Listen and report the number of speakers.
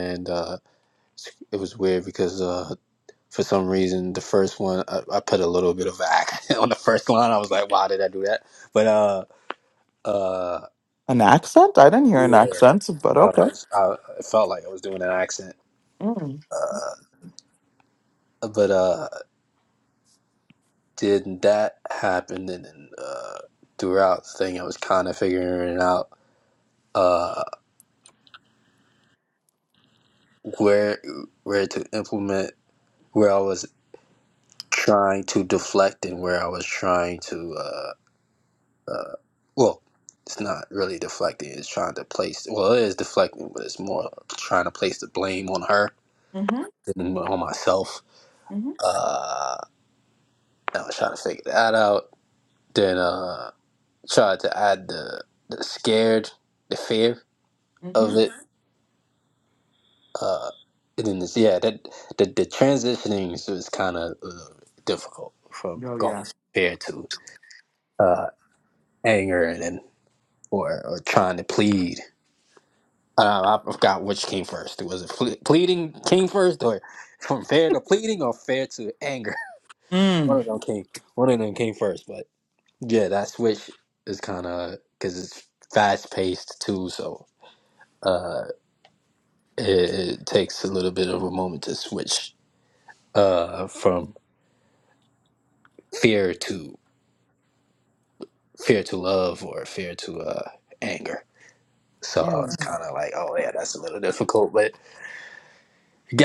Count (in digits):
2